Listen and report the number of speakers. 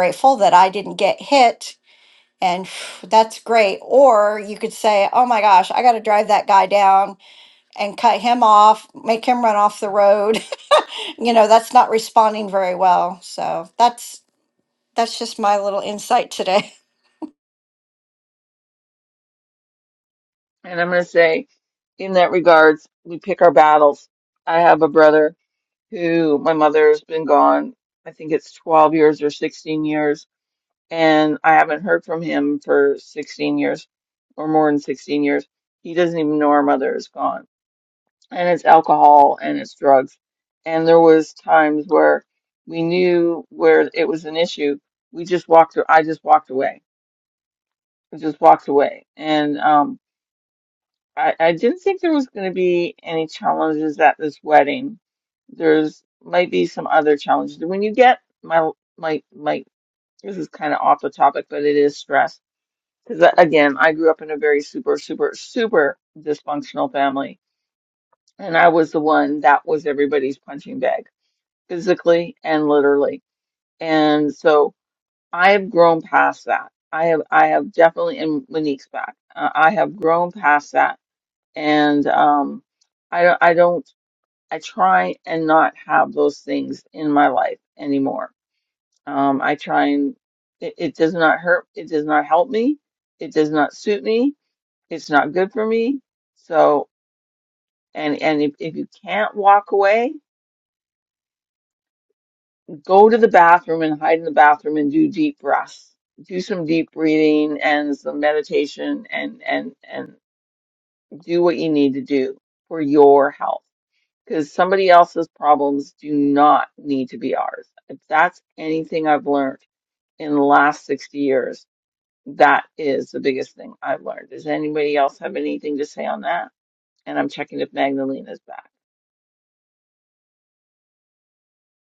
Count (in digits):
2